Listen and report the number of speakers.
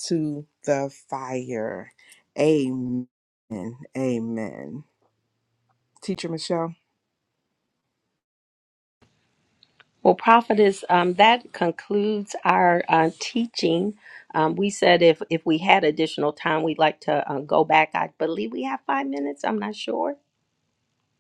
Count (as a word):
two